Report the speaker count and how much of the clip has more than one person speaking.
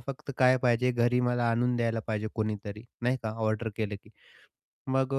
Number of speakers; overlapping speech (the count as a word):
one, no overlap